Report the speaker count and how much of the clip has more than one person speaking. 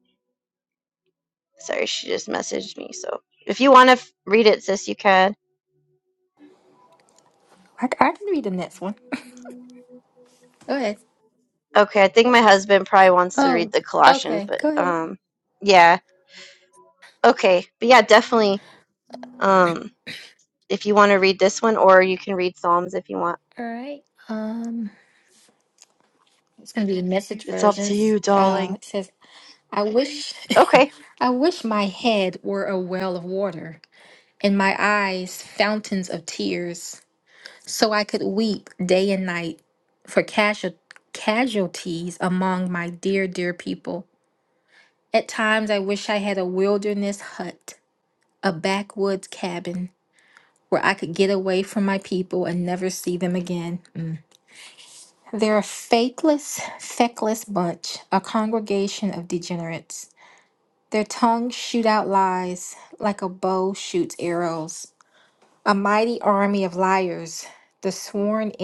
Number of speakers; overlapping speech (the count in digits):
2, about 3%